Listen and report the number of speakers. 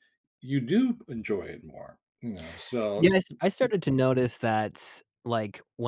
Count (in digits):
2